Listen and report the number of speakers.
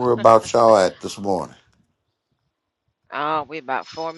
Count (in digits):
2